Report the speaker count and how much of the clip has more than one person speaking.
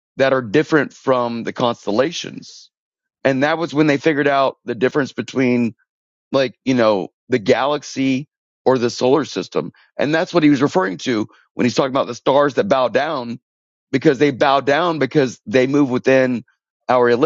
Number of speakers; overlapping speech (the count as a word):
one, no overlap